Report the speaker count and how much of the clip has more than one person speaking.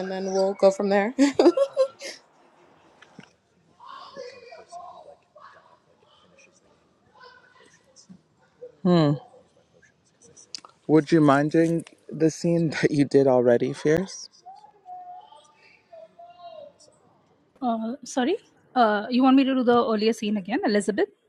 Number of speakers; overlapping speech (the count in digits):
3, no overlap